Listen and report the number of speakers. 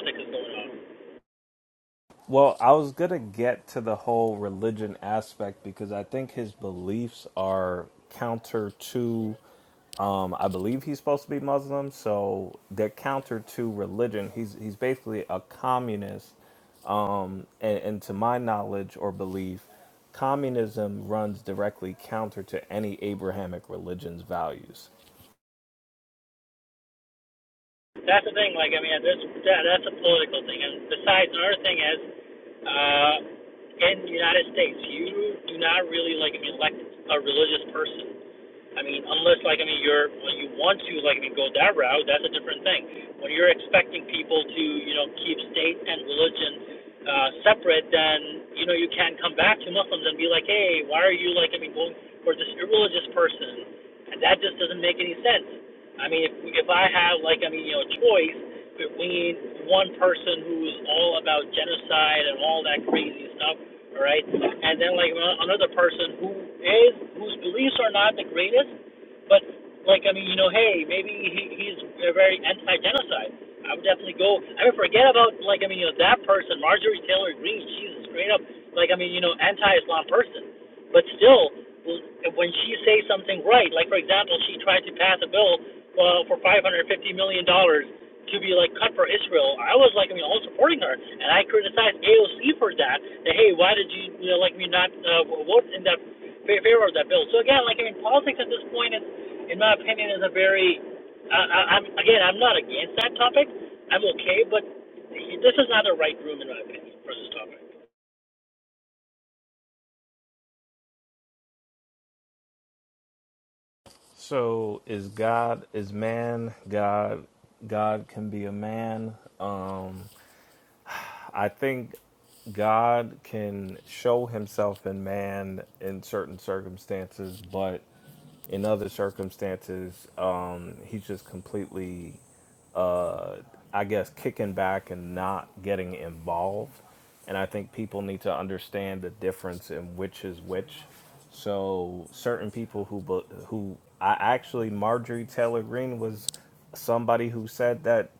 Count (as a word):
two